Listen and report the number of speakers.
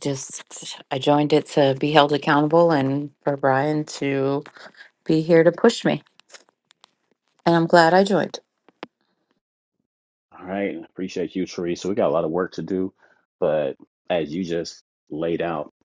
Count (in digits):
2